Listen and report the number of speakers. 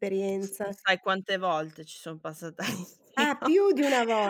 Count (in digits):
2